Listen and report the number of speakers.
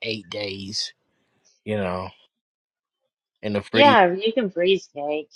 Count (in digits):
2